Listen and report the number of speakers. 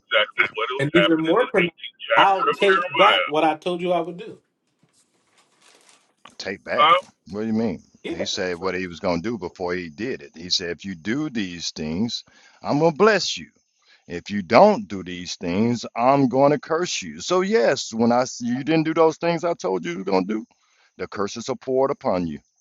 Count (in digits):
3